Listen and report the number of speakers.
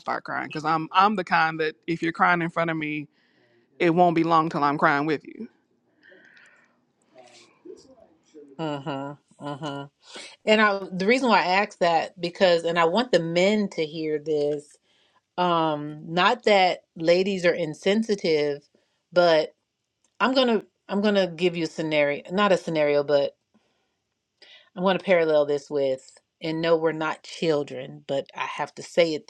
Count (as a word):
two